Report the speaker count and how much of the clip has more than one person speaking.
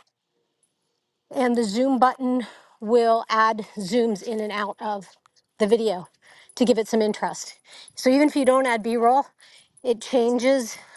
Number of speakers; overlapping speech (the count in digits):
1, no overlap